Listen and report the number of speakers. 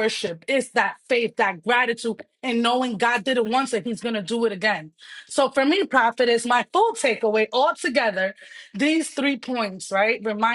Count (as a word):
one